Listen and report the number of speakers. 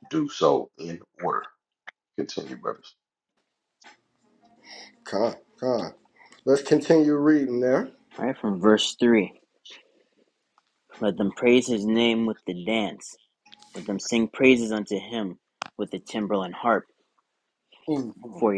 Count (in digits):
3